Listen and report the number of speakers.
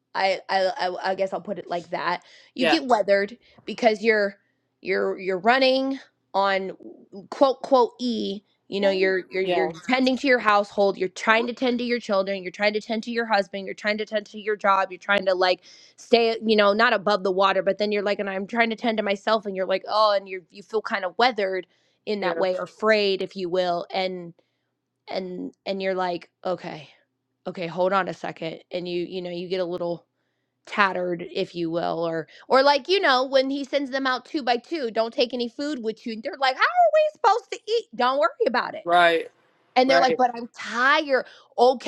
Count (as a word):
two